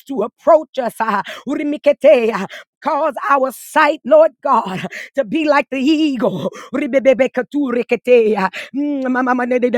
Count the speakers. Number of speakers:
1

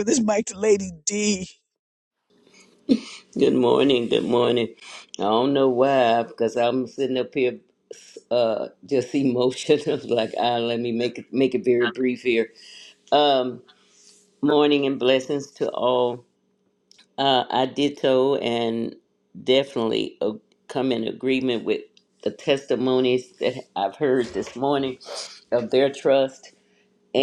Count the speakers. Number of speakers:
2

